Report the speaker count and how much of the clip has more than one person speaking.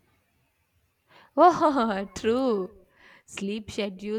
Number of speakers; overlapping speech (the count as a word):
one, no overlap